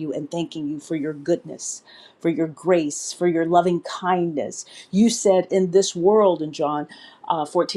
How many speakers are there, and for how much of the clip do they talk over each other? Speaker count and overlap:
1, no overlap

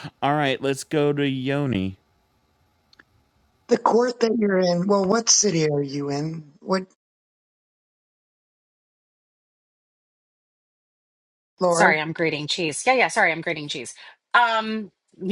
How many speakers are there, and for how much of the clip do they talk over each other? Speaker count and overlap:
3, about 1%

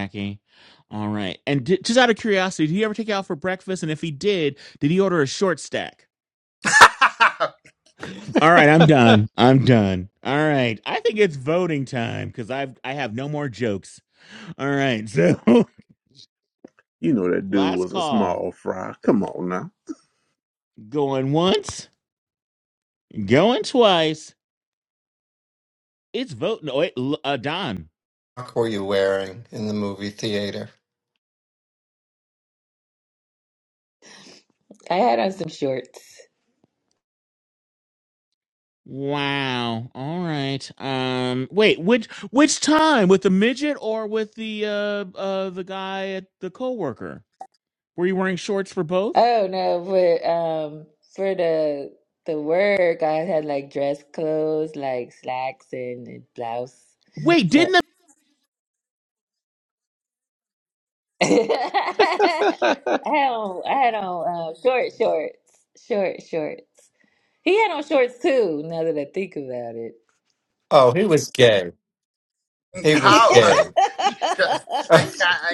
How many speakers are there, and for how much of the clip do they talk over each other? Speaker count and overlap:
5, about 2%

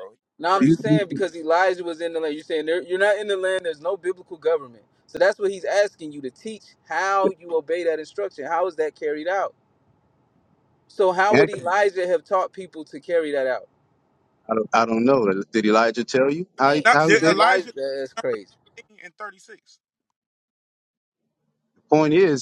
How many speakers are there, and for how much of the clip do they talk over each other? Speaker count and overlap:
3, about 7%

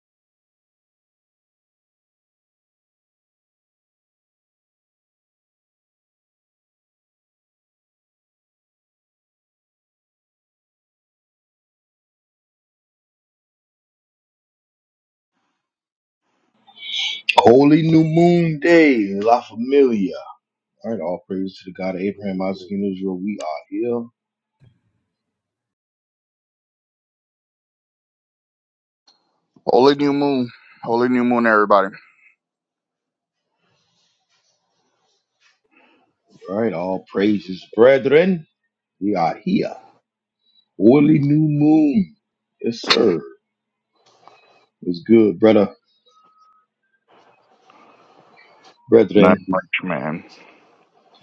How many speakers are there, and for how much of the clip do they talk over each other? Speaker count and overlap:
2, under 1%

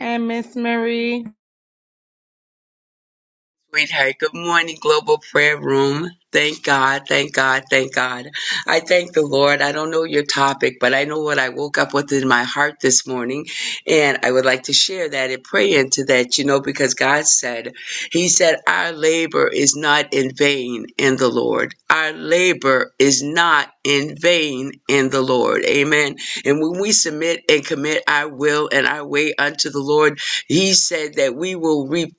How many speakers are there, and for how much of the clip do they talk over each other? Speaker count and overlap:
2, no overlap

